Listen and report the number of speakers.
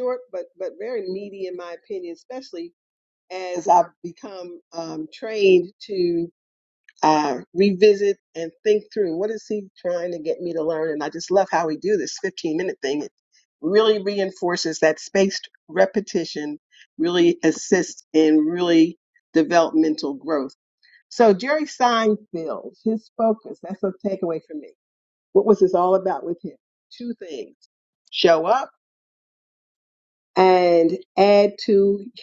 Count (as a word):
one